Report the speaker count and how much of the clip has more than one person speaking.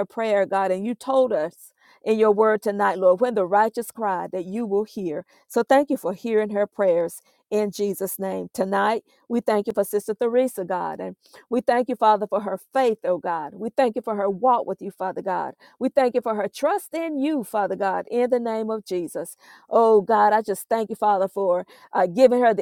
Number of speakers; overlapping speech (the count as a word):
one, no overlap